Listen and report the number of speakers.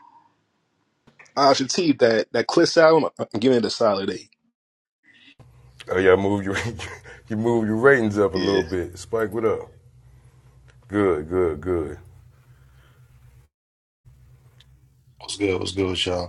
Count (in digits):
3